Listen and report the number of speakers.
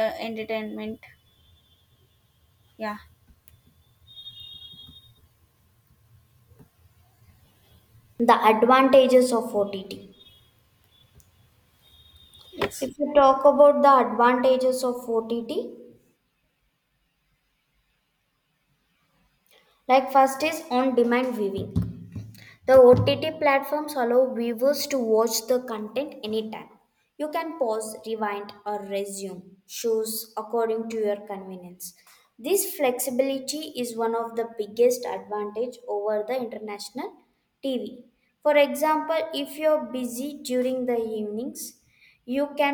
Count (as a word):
two